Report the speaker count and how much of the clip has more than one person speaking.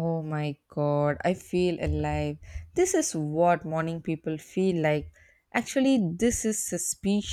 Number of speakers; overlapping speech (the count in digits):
1, no overlap